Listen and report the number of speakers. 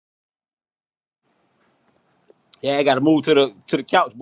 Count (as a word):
one